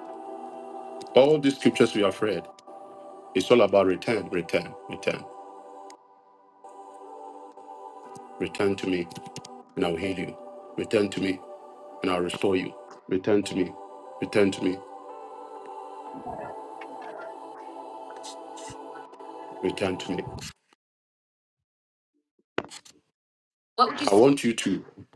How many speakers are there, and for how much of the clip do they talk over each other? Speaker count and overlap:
one, no overlap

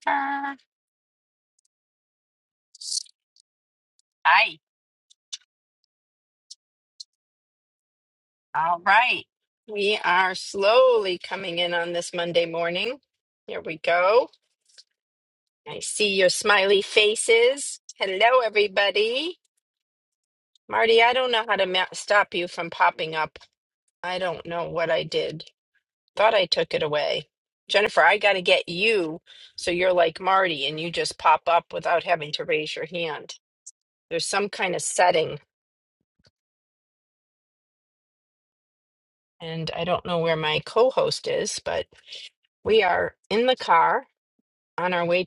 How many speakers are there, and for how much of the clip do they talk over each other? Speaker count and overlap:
one, no overlap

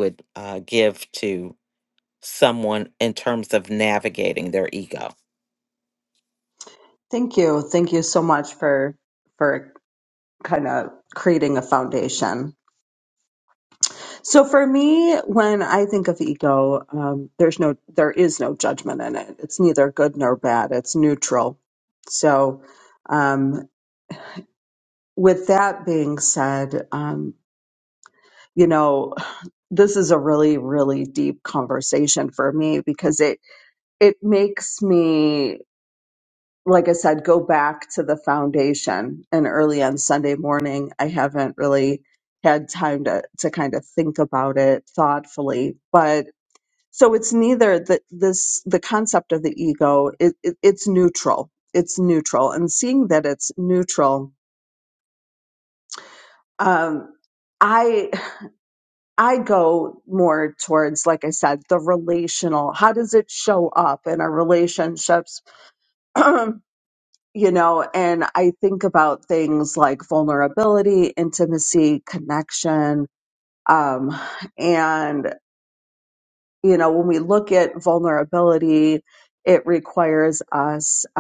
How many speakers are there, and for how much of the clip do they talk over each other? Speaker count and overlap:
two, no overlap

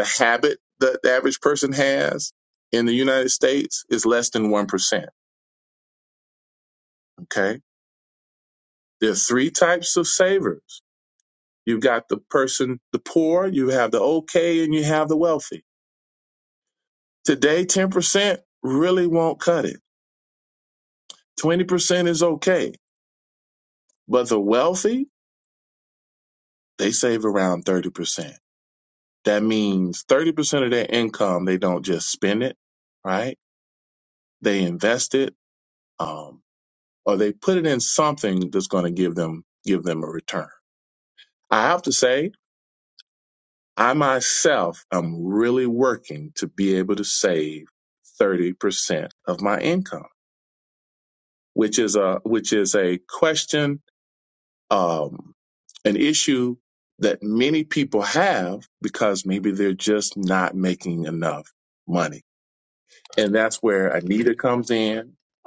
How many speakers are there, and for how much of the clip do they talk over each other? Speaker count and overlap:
one, no overlap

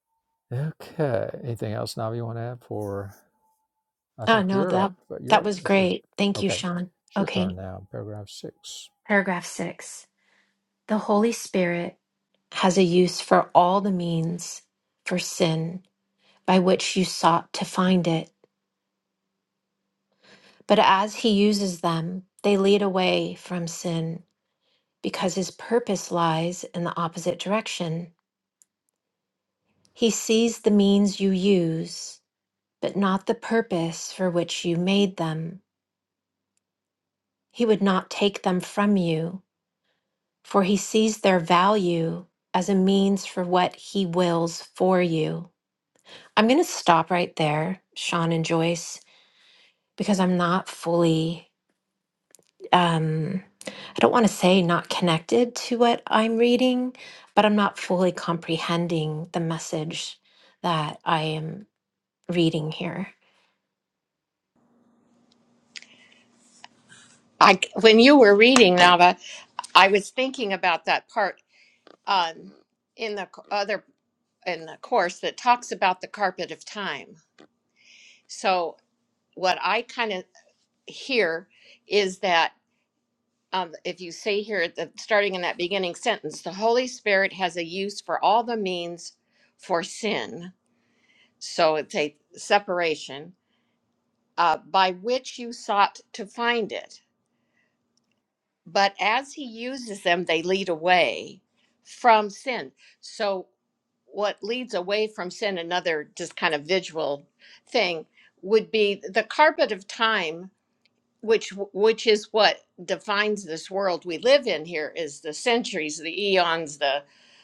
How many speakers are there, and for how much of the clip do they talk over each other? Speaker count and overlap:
three, about 2%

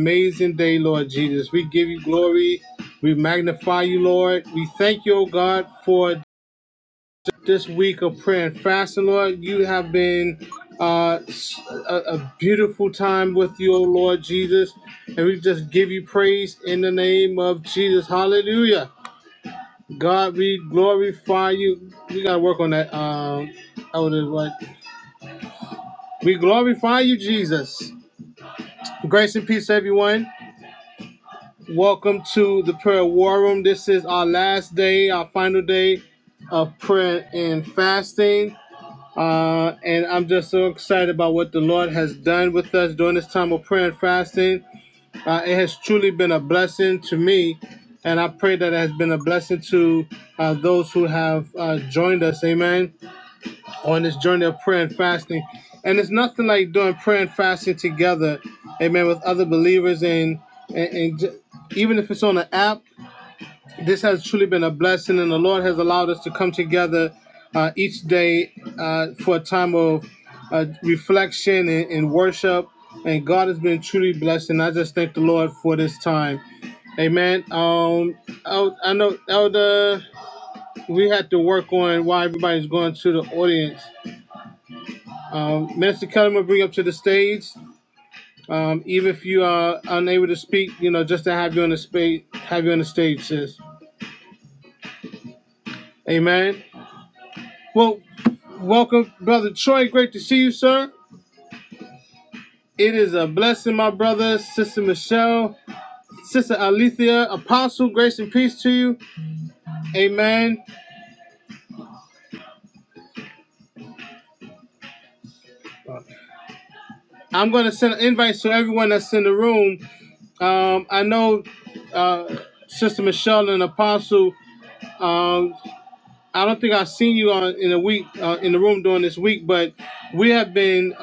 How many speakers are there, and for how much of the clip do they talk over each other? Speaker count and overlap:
one, no overlap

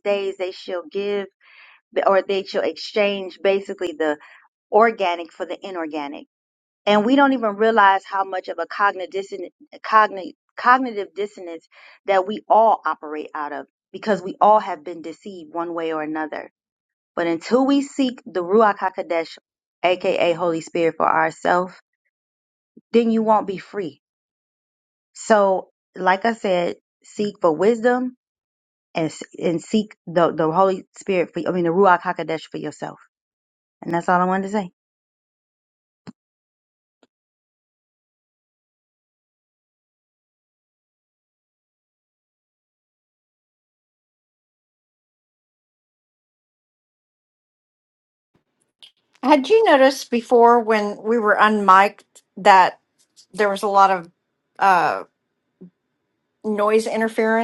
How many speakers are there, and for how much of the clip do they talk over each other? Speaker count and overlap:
two, no overlap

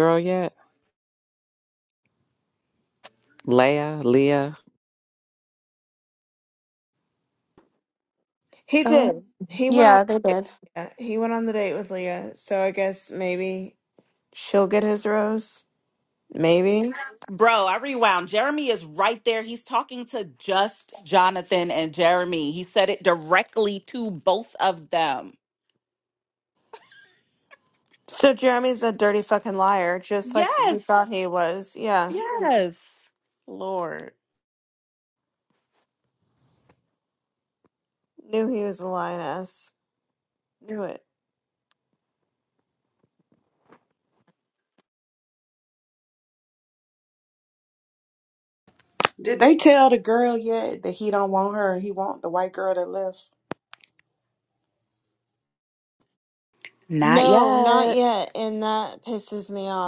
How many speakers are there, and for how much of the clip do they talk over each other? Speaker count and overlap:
five, about 4%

